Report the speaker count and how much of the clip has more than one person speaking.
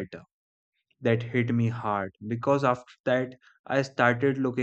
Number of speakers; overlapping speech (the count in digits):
1, no overlap